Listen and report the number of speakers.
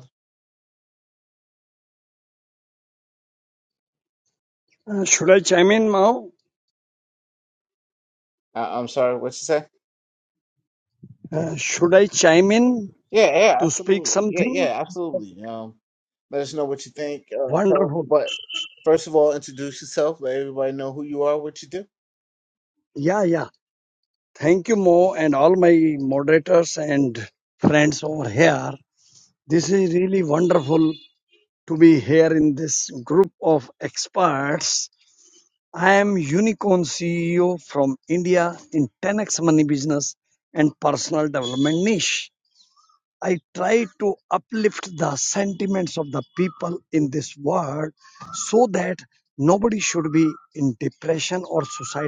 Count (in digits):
2